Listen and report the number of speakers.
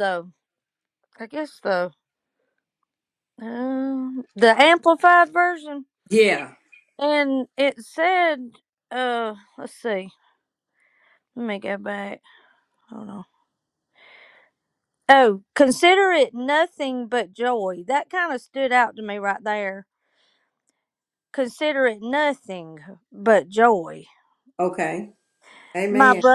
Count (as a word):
two